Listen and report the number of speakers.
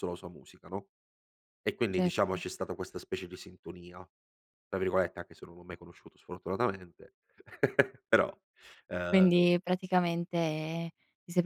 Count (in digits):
2